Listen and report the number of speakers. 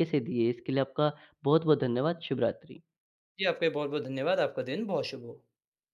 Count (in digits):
2